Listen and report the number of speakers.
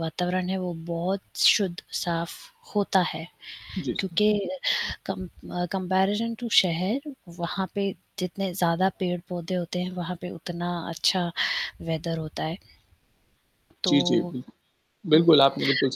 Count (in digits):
2